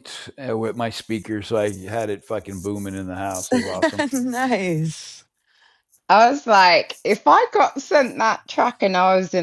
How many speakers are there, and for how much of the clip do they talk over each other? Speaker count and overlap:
3, no overlap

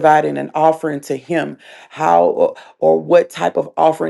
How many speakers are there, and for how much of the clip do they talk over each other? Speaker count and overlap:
1, no overlap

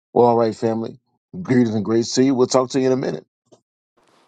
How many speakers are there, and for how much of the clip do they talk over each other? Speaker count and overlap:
1, no overlap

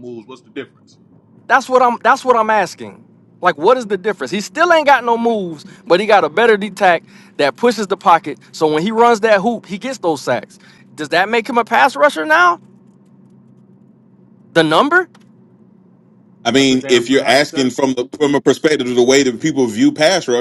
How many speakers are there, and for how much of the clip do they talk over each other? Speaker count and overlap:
3, about 6%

